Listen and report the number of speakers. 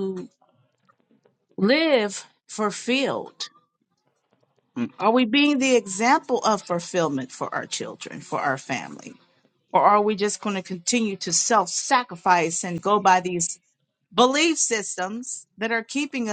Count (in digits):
1